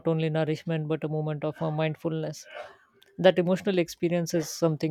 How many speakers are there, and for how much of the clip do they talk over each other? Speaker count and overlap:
one, no overlap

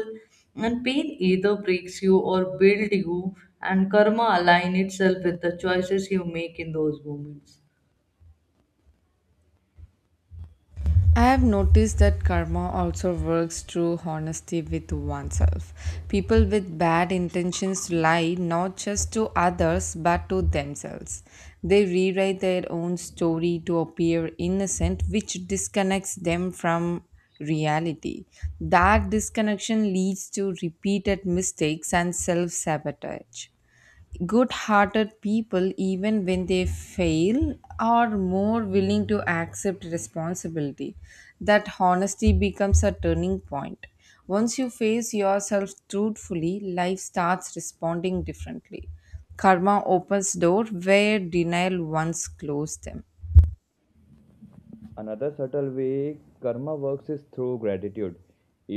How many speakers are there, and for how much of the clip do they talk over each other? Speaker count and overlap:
three, no overlap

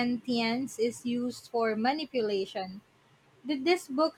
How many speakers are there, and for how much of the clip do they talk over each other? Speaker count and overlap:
one, no overlap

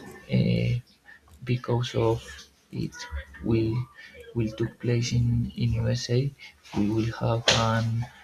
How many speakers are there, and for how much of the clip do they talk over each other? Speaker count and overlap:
one, no overlap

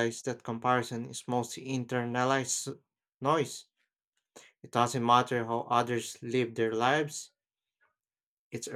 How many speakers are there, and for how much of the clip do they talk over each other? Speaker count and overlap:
one, no overlap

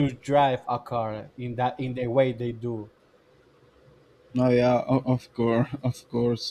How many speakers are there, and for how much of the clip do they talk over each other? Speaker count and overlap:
two, no overlap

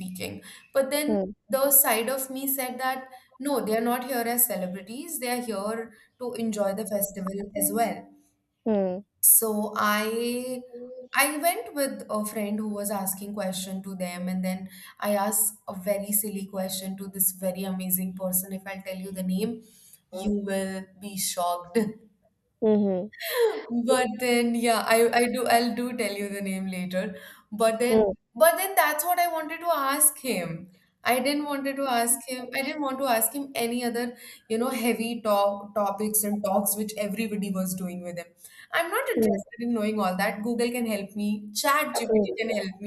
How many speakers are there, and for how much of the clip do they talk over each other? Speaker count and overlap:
two, about 3%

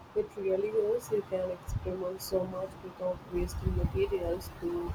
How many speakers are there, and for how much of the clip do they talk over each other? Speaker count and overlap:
one, no overlap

